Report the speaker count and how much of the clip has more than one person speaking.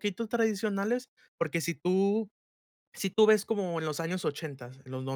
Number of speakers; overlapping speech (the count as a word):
one, no overlap